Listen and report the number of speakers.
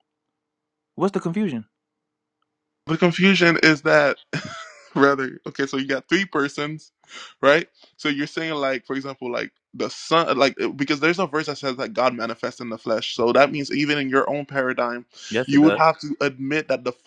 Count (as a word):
two